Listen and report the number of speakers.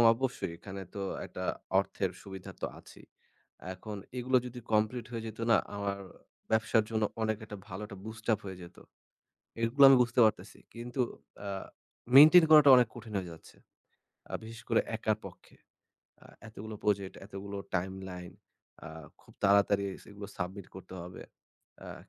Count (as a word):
one